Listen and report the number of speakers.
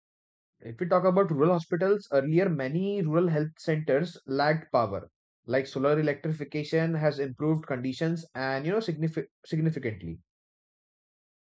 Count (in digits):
1